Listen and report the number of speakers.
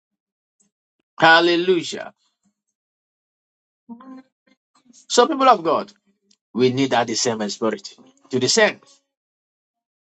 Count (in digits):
1